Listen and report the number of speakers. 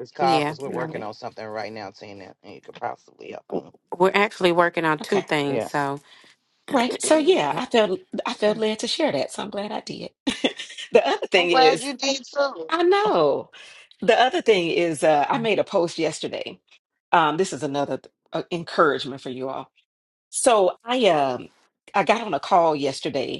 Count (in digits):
3